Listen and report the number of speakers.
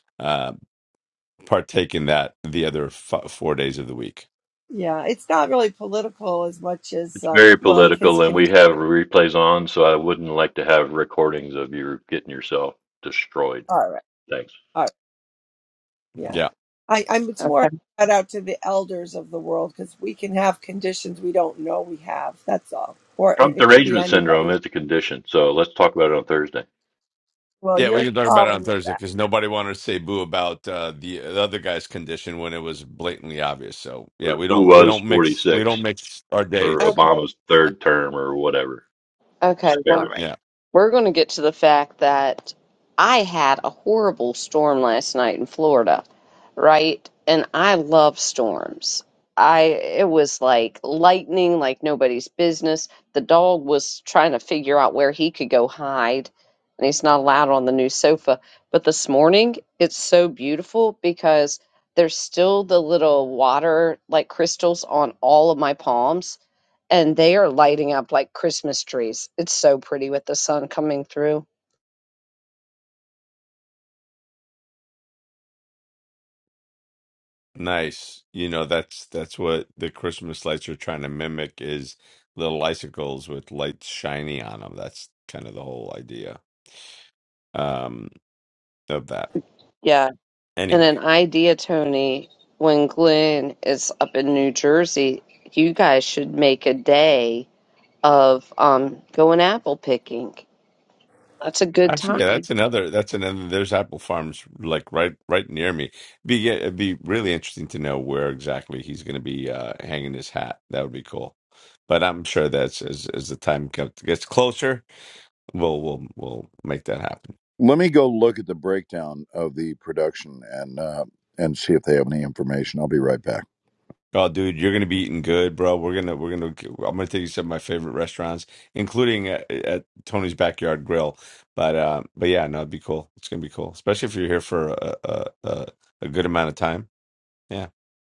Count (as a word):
five